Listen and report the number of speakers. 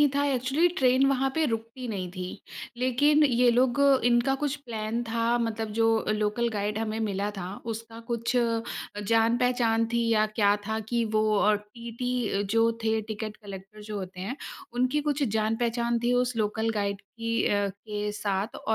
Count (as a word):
one